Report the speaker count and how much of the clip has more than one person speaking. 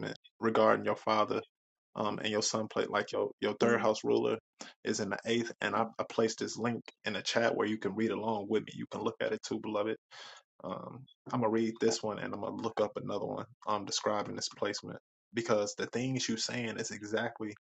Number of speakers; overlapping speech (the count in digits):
1, no overlap